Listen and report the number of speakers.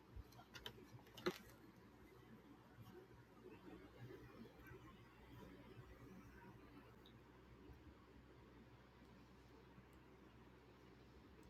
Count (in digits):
0